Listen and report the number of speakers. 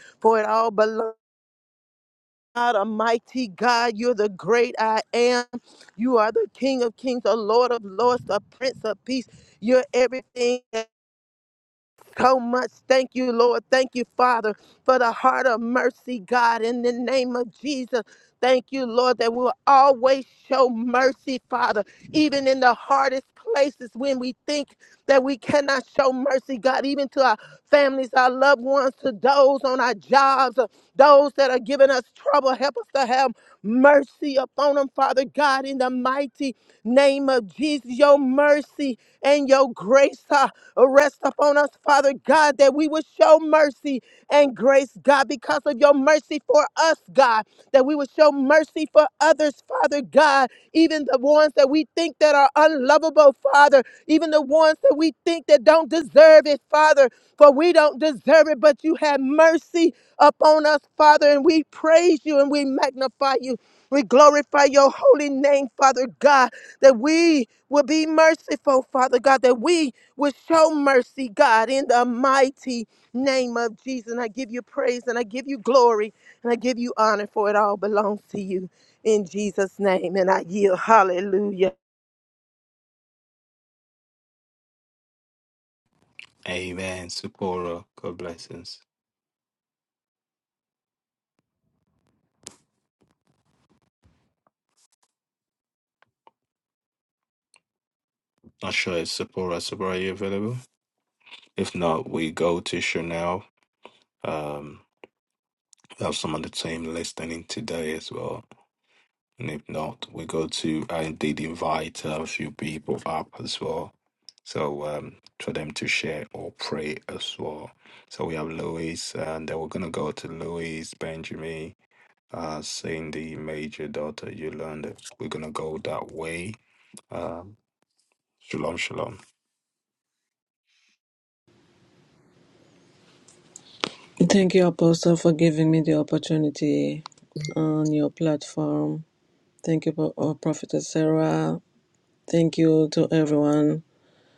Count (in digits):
3